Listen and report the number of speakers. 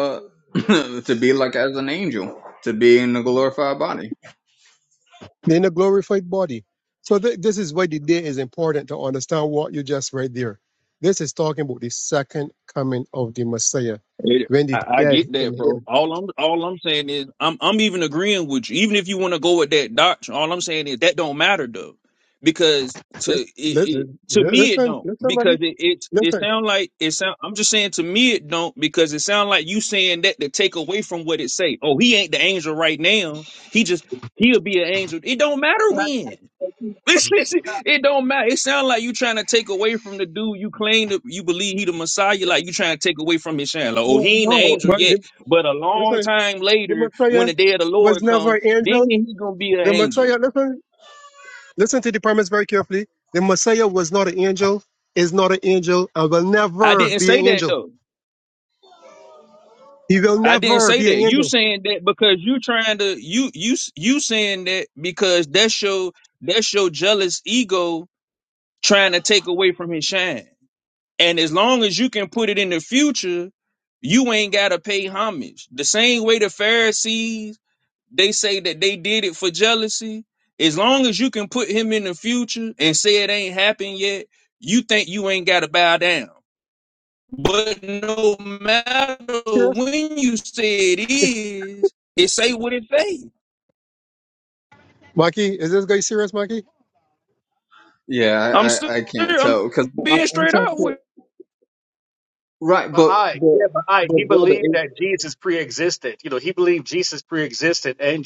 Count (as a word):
four